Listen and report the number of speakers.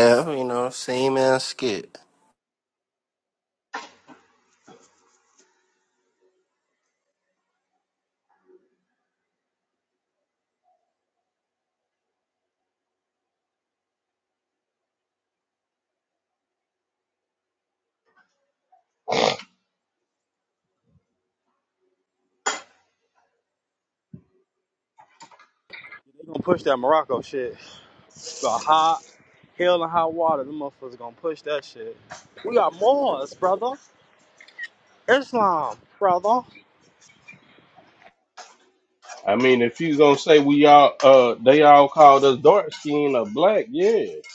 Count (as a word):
three